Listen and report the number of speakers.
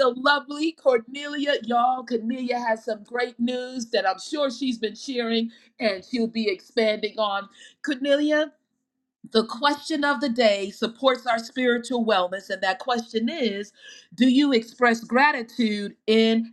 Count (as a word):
one